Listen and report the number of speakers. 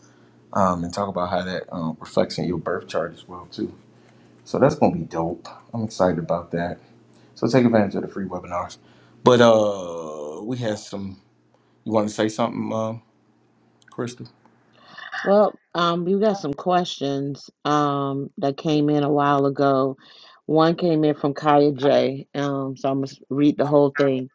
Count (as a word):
two